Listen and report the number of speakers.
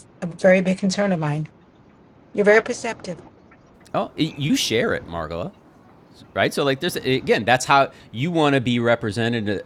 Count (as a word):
two